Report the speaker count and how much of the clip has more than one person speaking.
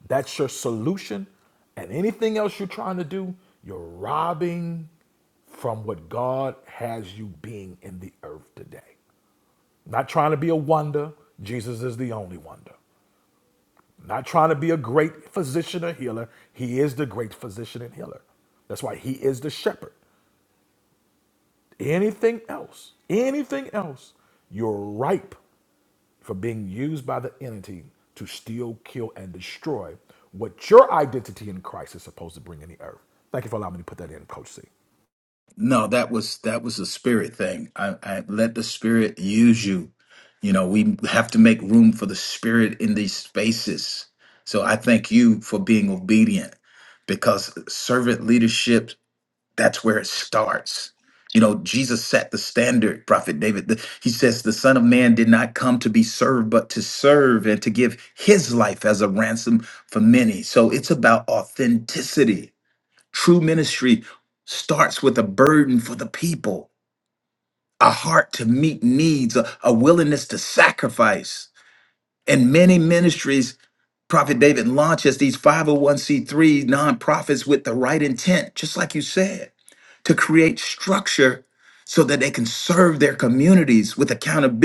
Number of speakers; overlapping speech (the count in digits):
2, no overlap